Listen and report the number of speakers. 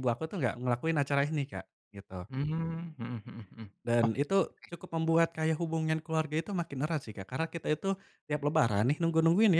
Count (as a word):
two